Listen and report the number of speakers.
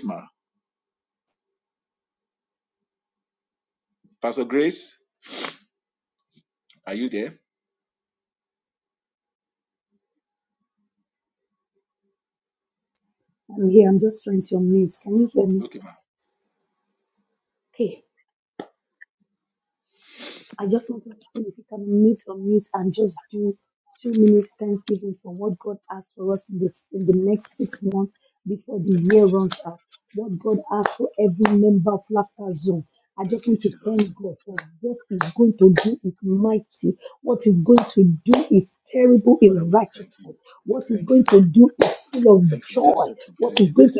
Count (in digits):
2